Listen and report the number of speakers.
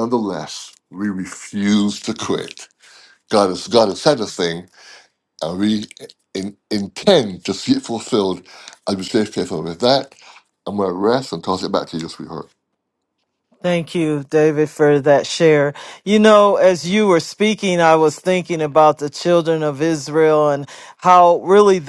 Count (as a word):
two